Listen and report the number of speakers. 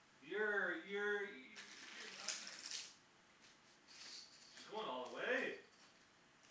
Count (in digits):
1